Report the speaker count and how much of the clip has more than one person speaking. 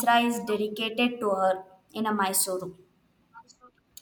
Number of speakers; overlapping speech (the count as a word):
one, no overlap